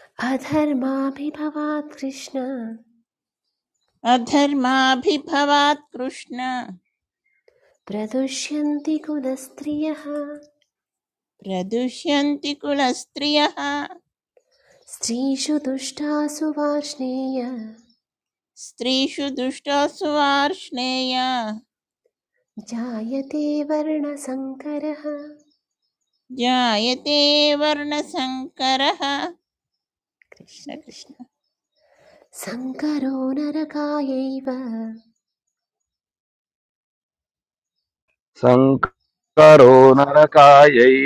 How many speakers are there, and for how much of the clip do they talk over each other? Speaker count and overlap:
three, under 1%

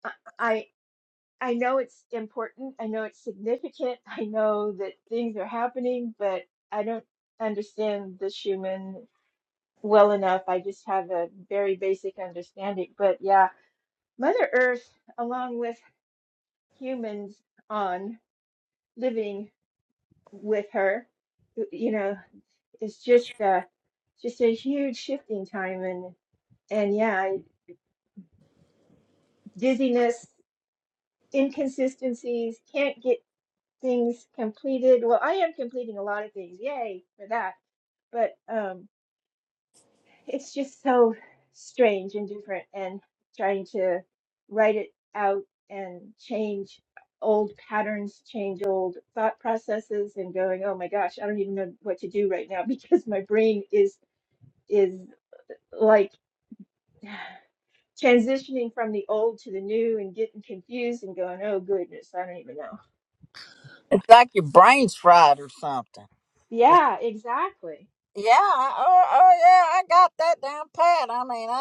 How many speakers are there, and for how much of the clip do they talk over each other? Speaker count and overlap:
two, no overlap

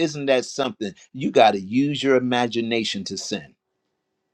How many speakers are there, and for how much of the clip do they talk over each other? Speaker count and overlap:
one, no overlap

